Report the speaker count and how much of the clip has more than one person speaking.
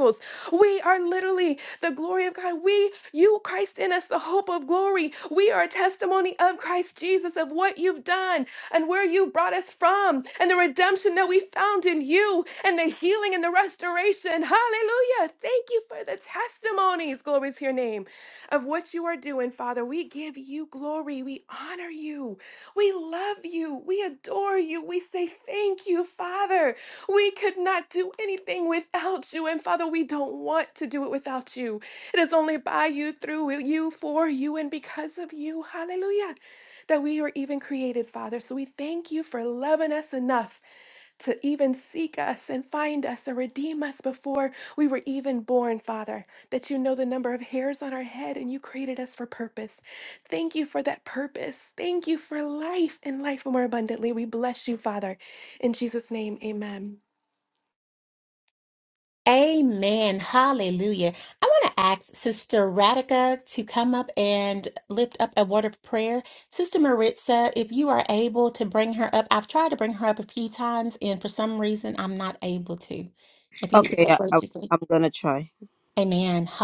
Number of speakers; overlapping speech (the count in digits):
3, about 1%